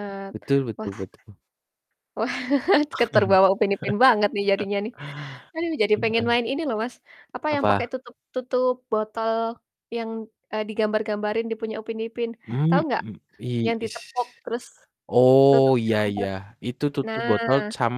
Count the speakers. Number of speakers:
2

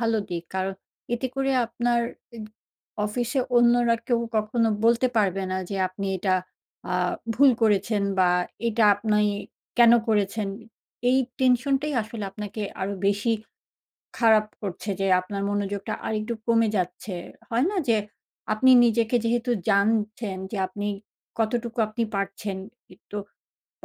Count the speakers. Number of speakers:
1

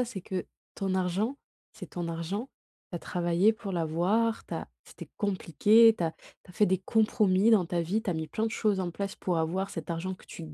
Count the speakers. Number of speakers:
1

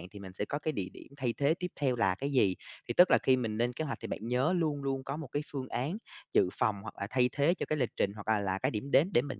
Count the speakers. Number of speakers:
1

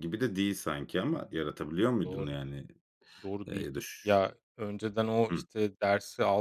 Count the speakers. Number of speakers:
2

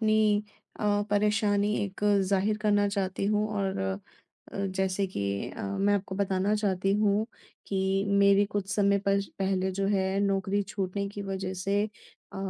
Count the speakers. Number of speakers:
1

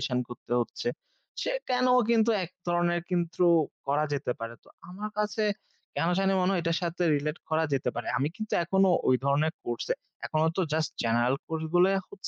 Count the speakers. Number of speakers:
1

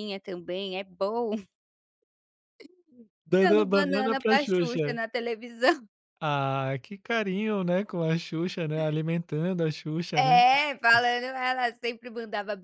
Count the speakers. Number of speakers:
2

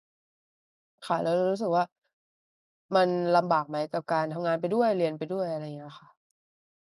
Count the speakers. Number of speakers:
1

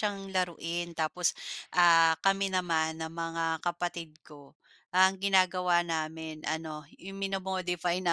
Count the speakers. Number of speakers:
1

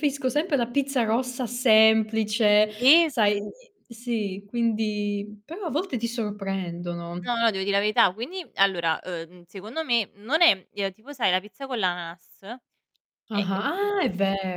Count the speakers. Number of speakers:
2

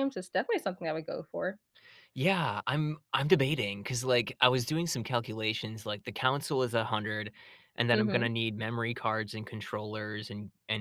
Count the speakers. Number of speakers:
2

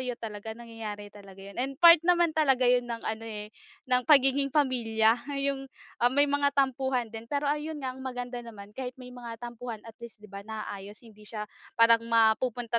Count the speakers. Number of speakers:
1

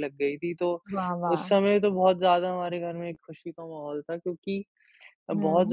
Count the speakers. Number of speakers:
2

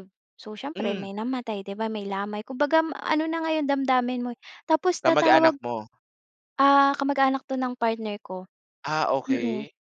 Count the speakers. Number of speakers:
2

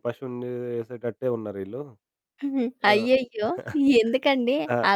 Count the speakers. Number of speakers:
2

